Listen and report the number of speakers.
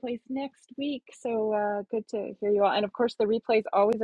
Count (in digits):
1